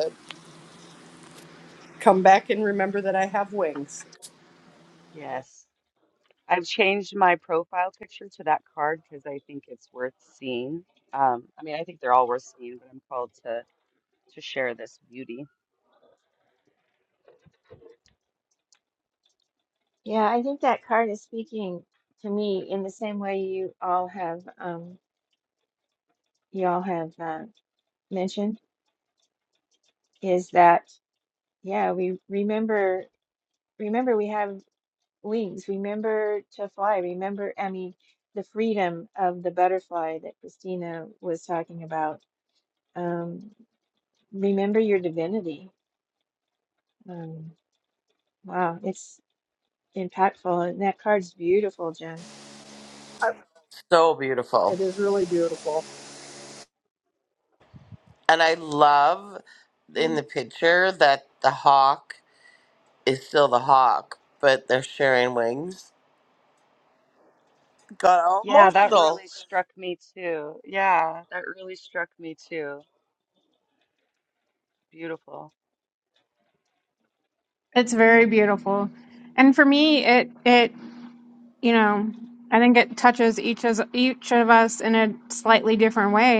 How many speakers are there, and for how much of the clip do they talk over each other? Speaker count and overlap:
5, about 1%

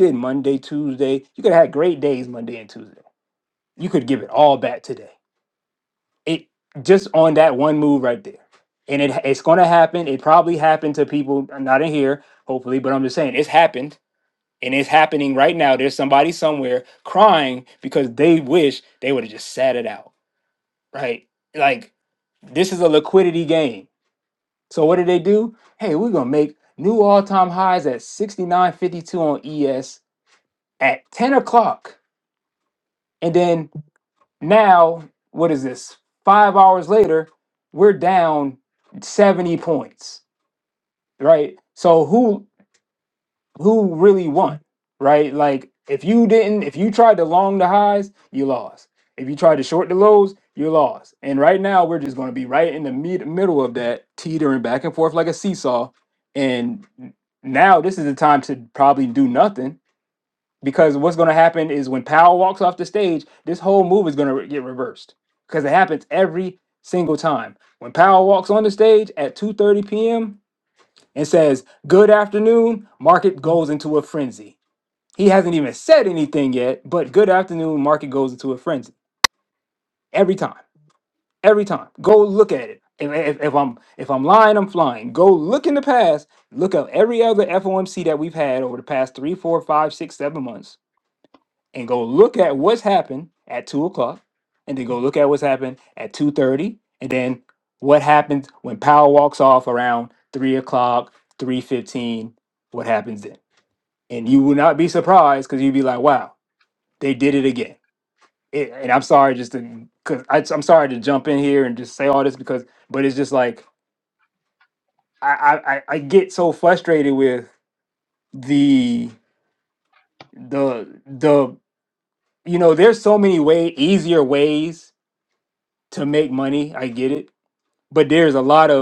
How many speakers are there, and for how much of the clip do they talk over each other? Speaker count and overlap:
1, no overlap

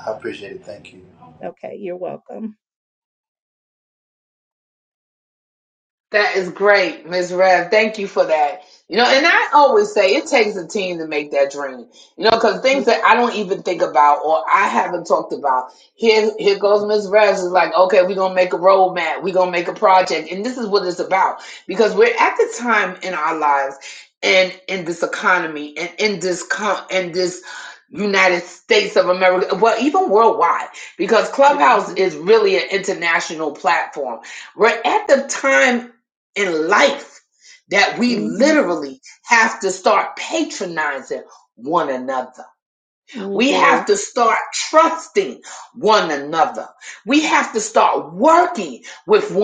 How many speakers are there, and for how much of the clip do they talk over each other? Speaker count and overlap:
3, about 3%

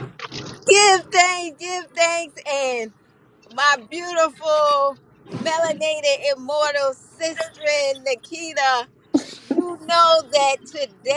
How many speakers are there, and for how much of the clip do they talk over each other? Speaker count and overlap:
1, no overlap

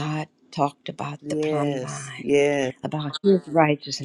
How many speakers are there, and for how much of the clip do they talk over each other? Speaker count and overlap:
2, about 16%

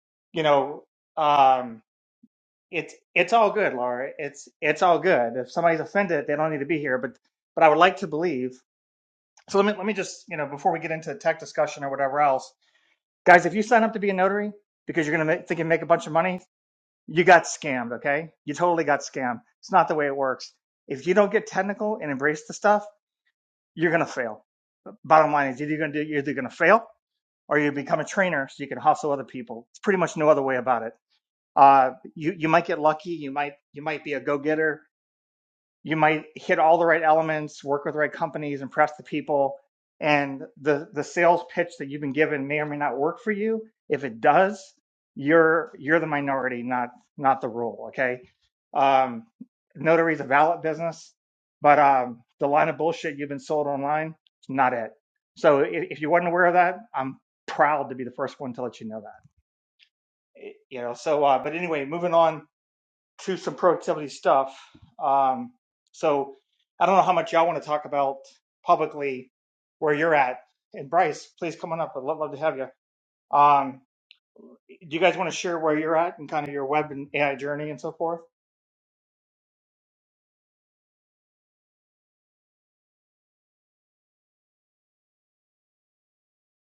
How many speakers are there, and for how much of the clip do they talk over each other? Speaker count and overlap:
1, no overlap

